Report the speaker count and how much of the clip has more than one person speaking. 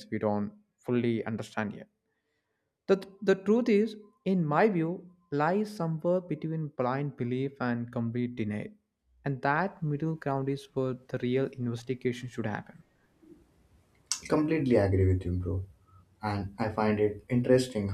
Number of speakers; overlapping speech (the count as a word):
two, no overlap